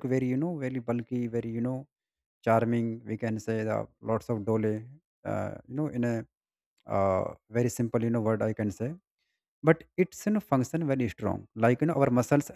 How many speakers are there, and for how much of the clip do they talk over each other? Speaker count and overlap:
1, no overlap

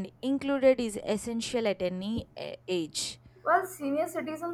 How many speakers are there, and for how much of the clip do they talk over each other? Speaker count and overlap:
2, no overlap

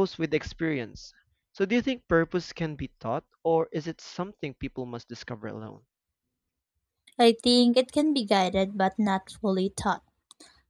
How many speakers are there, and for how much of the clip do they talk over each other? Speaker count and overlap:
2, no overlap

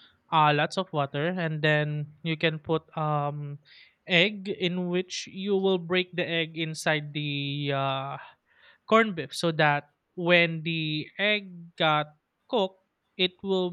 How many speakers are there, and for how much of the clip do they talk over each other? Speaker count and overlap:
1, no overlap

